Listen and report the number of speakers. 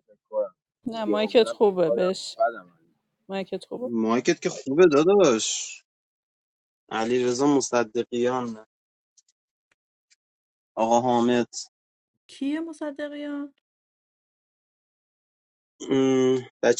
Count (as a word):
four